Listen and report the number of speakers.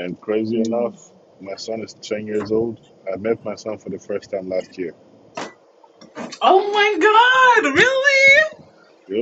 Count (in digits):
2